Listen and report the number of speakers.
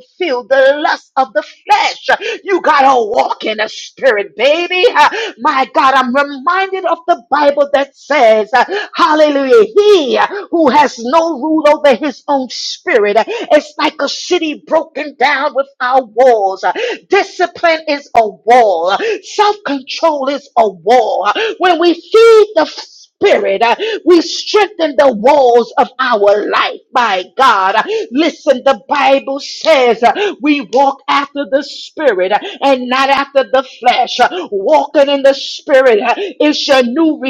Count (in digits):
1